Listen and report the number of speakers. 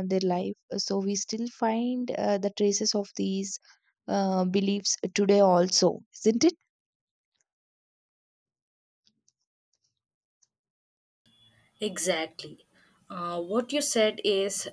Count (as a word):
two